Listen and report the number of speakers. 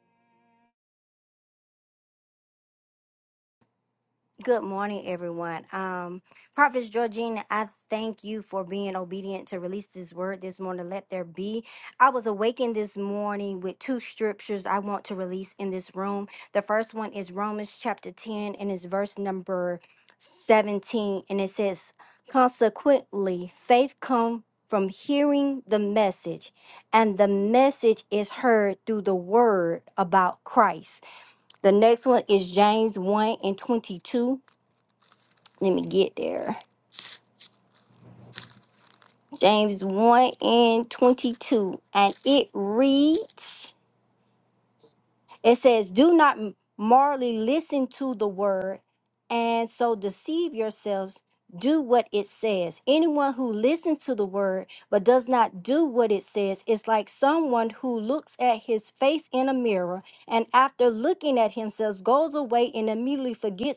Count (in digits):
1